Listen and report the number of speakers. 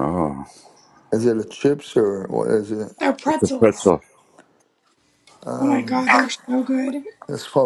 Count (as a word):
three